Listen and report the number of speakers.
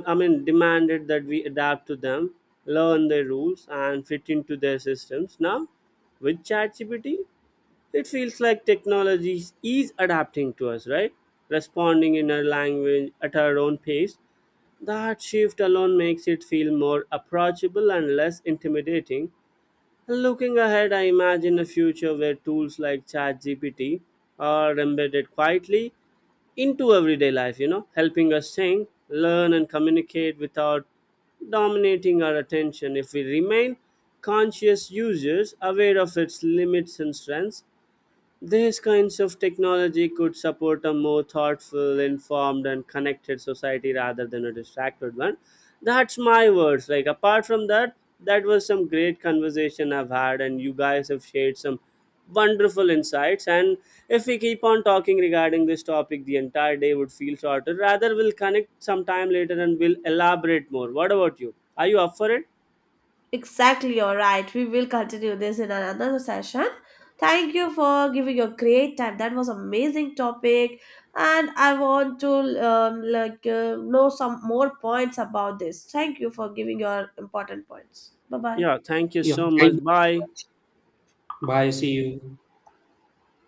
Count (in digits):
3